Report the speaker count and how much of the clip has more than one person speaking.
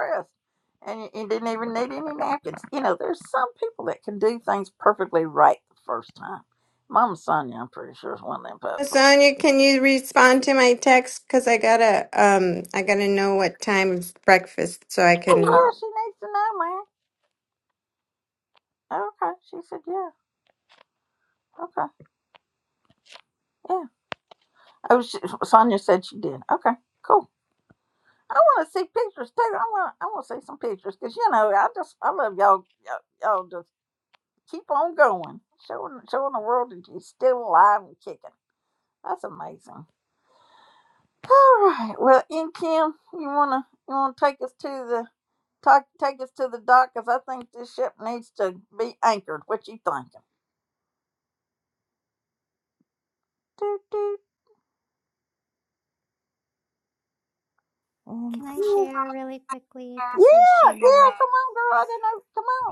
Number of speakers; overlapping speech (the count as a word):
three, about 3%